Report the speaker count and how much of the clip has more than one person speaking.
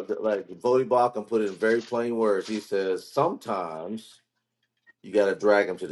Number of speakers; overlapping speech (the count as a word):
one, no overlap